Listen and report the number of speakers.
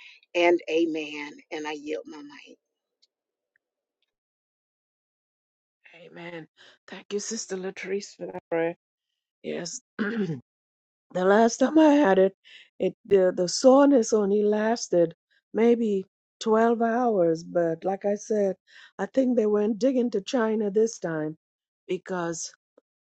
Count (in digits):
2